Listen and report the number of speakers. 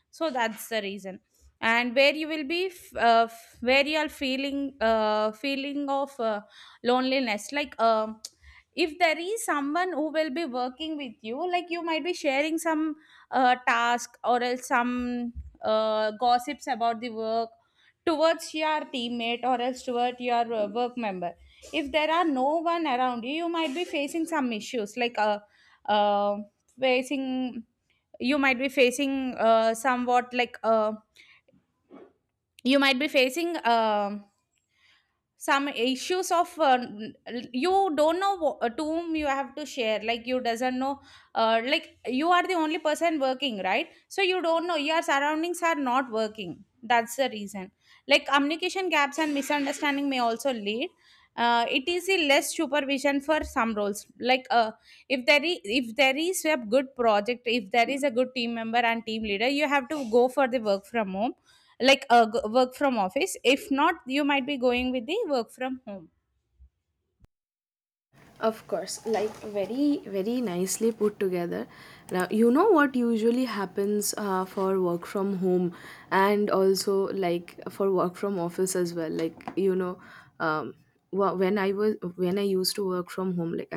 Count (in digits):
2